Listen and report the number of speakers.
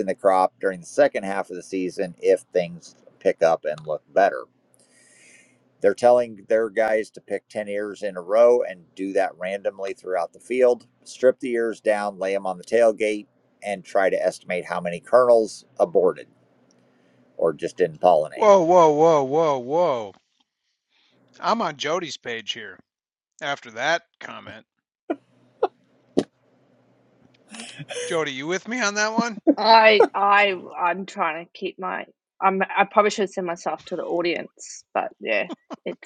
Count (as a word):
three